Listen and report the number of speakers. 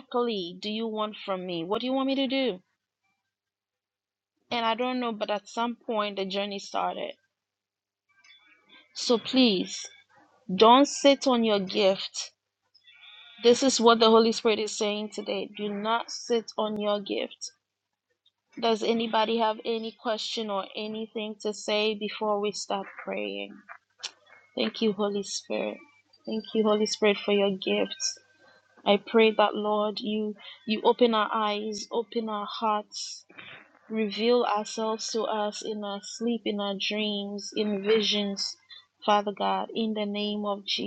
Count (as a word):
one